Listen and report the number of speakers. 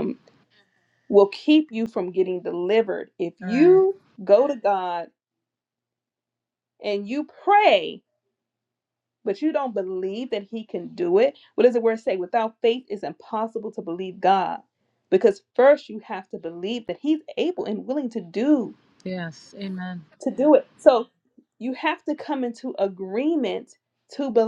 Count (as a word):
two